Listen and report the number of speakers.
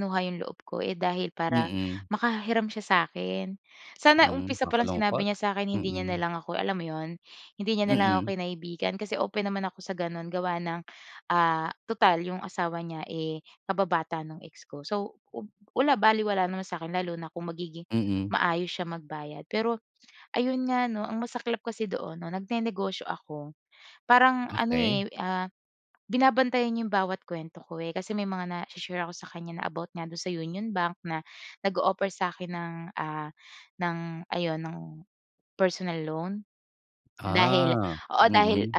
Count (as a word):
two